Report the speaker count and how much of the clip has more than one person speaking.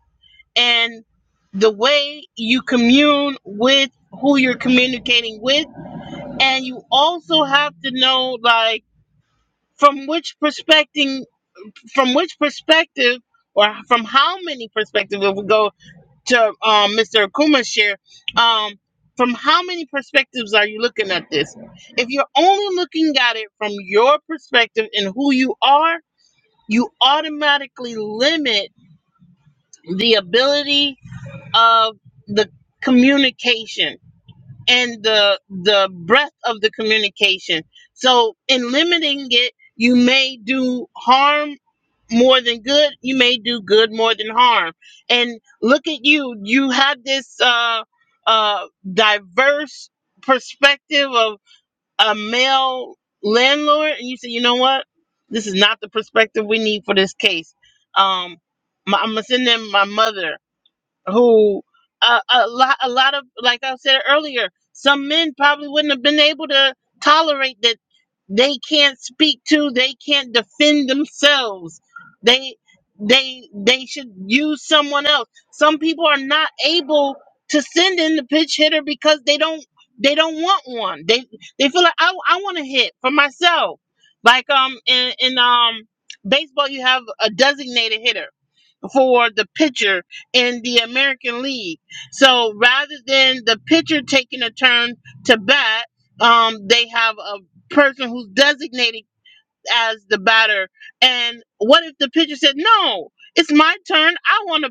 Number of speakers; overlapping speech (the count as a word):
one, no overlap